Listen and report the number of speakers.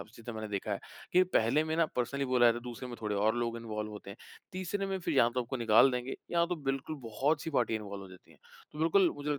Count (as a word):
one